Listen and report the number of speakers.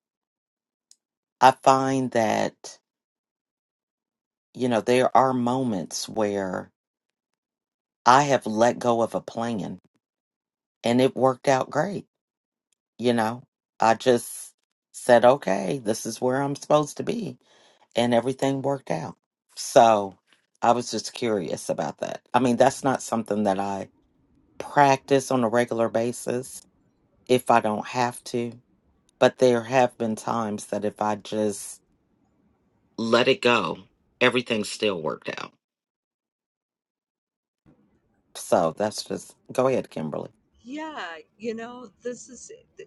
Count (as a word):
two